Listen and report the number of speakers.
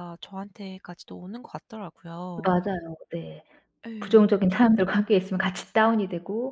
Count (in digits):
2